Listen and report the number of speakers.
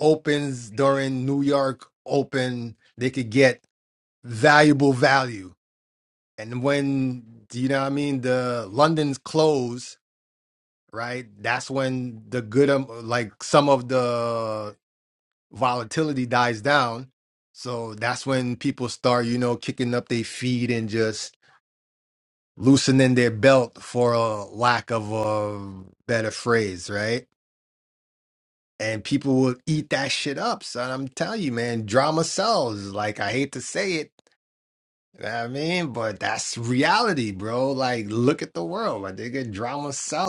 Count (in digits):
1